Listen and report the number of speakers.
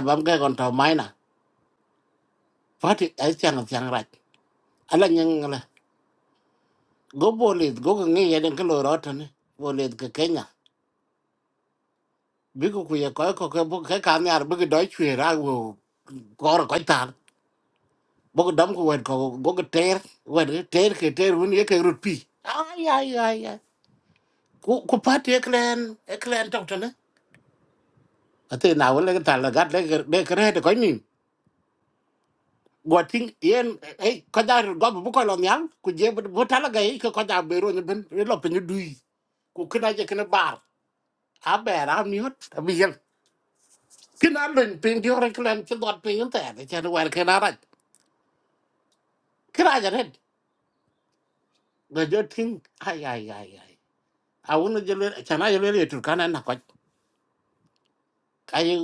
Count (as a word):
one